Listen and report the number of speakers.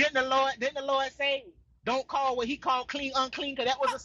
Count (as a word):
one